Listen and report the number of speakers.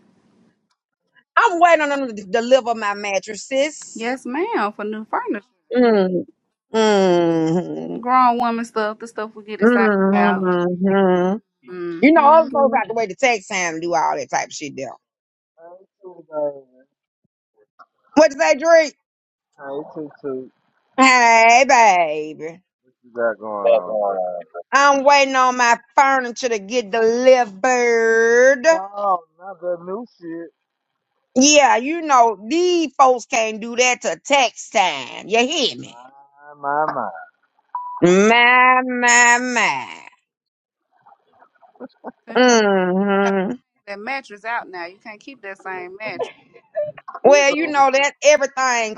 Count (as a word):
three